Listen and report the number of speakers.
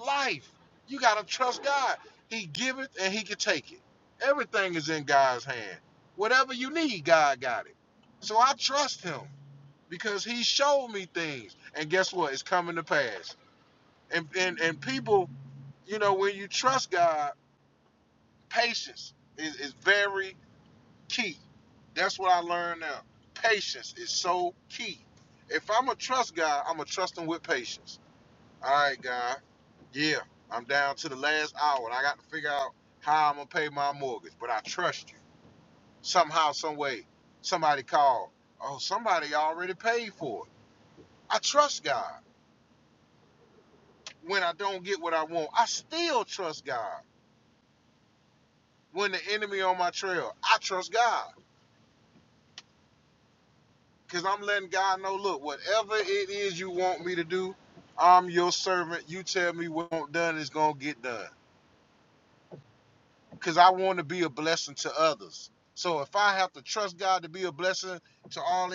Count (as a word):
one